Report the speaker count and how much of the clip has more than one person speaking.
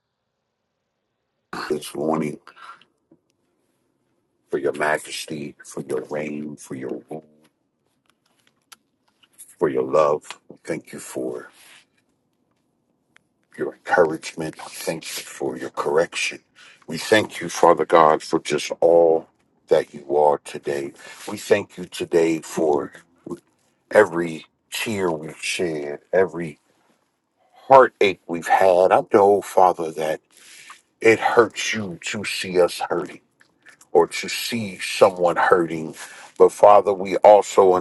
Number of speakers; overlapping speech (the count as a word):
one, no overlap